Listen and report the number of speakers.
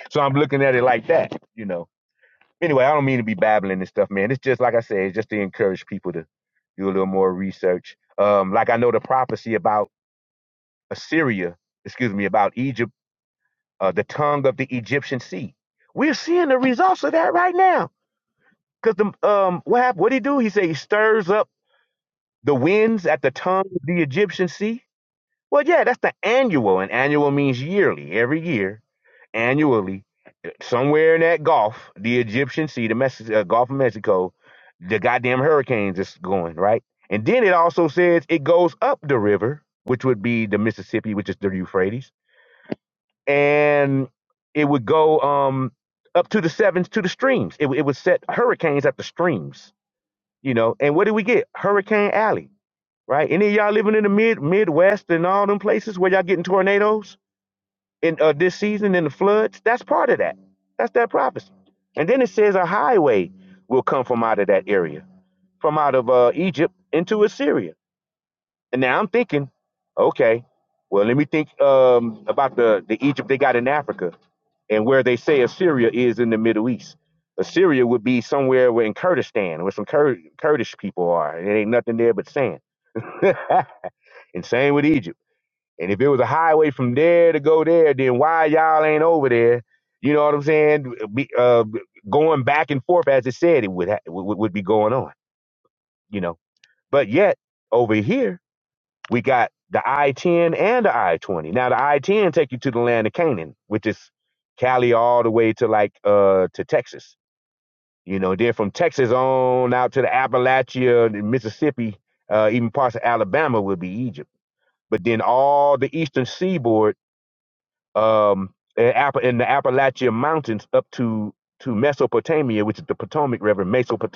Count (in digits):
1